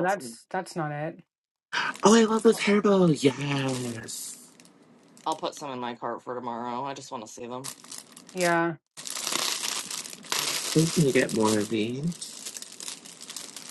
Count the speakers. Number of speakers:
3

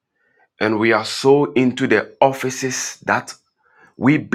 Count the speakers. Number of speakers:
1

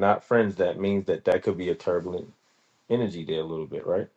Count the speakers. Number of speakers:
1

